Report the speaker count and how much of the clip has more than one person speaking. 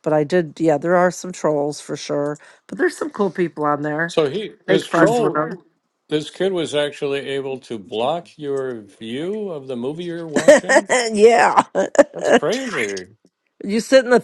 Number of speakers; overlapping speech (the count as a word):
two, about 5%